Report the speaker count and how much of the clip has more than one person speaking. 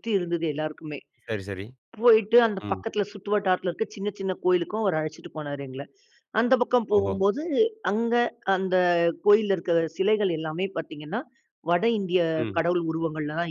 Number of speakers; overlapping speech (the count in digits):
2, about 5%